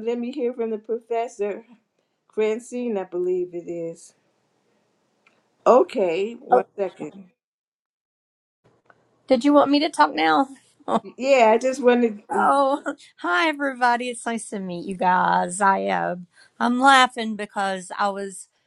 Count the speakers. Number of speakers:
2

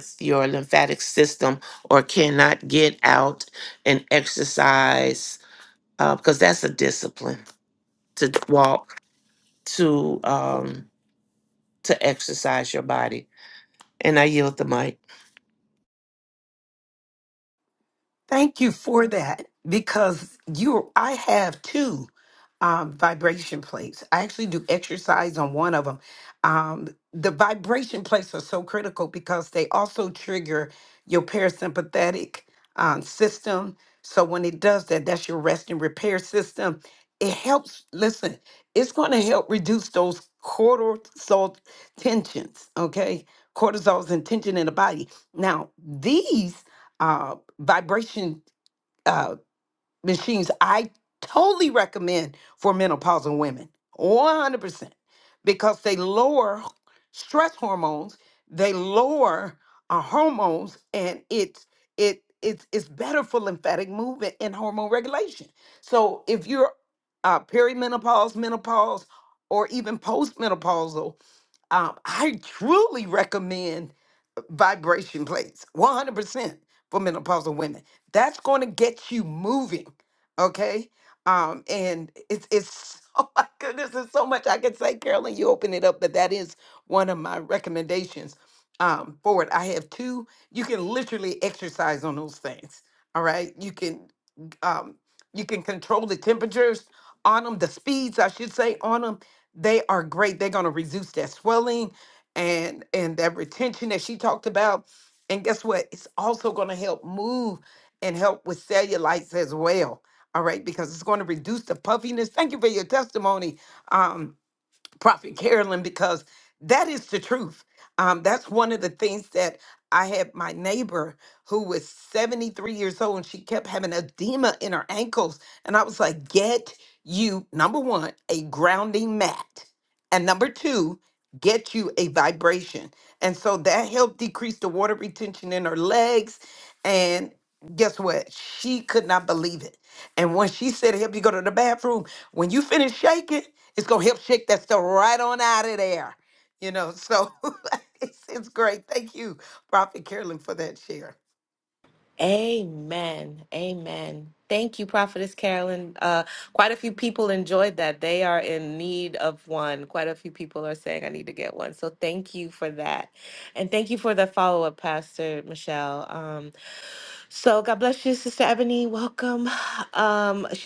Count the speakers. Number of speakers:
3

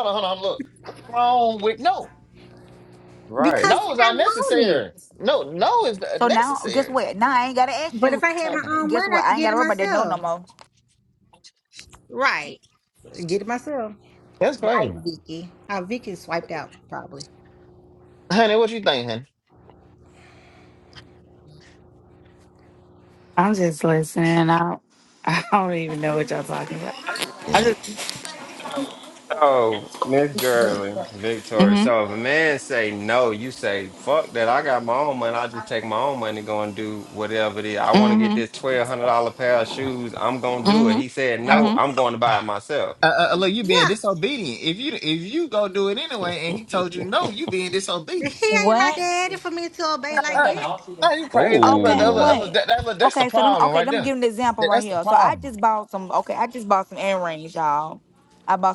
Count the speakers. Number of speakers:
5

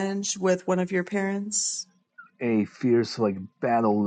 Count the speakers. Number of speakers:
2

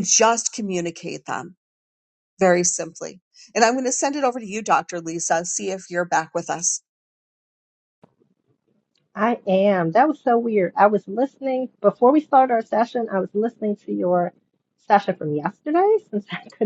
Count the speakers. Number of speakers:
2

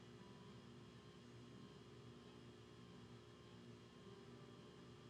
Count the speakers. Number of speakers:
0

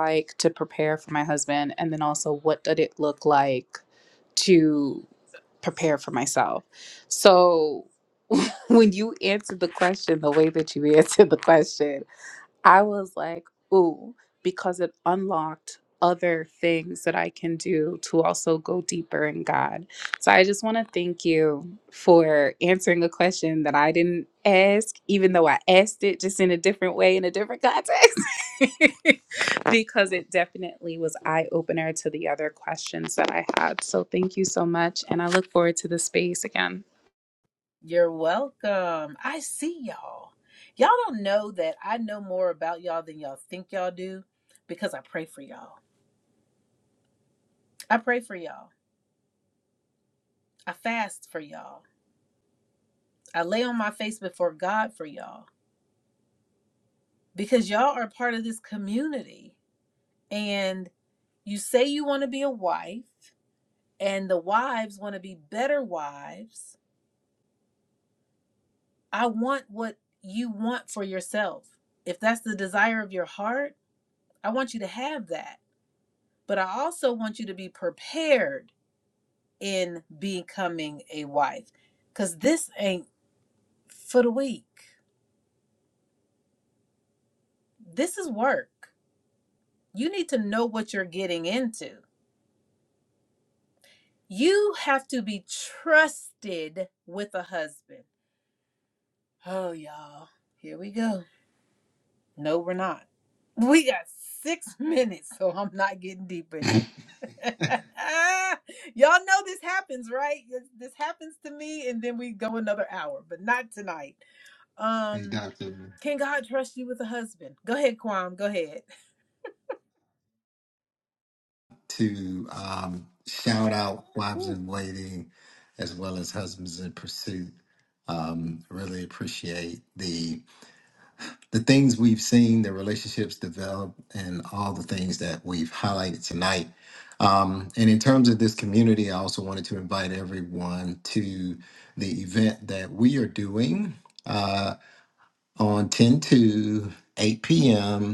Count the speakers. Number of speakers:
3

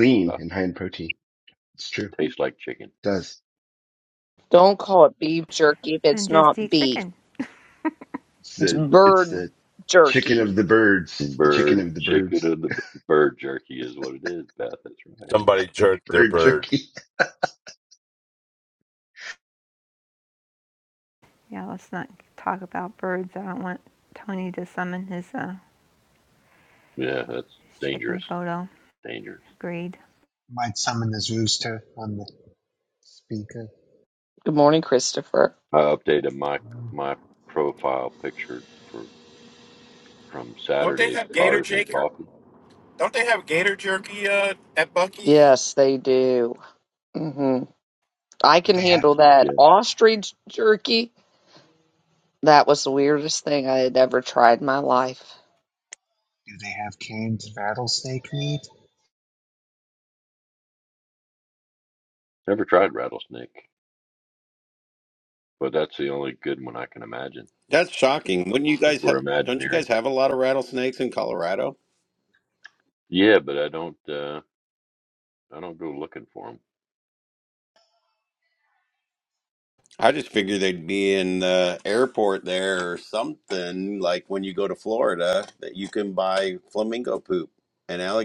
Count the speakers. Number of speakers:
8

